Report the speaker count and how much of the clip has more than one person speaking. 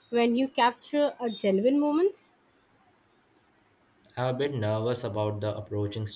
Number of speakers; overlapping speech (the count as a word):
two, no overlap